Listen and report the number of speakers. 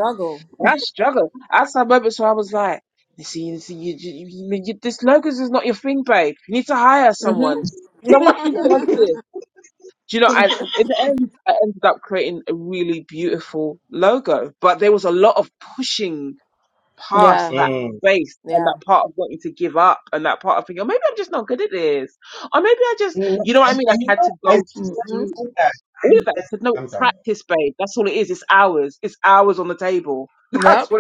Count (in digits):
3